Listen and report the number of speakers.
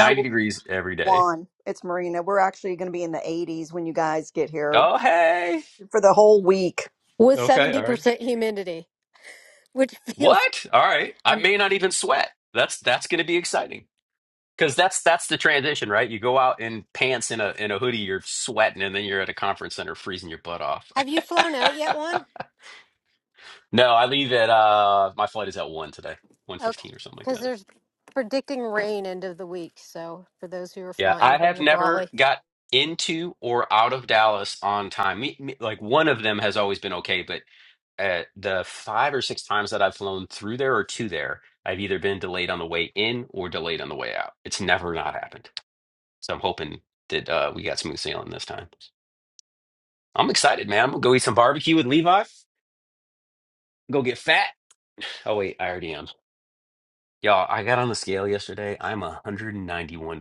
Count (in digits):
3